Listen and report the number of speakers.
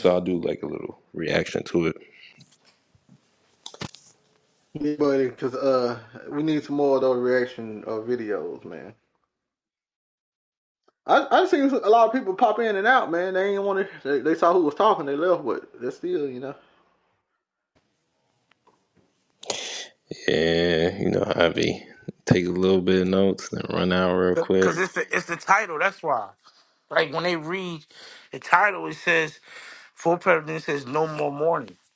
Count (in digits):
3